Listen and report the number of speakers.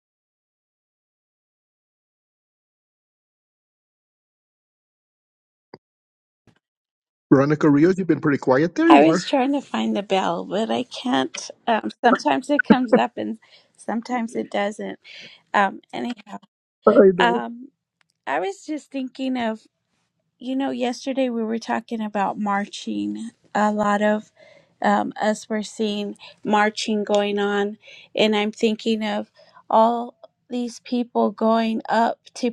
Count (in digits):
2